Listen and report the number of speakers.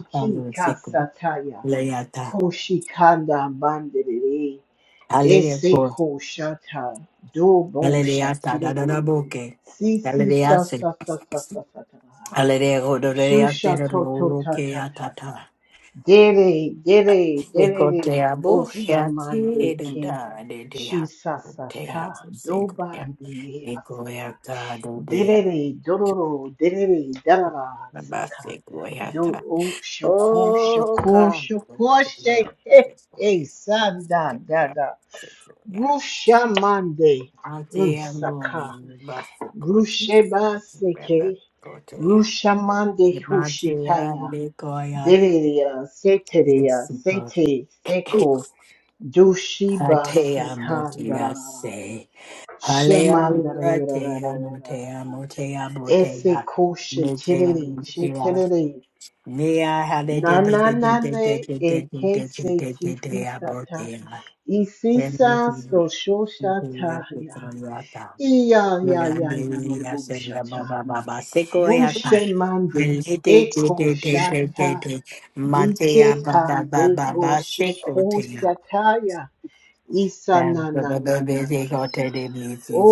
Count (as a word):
two